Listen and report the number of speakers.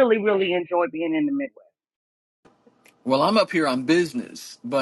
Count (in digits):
2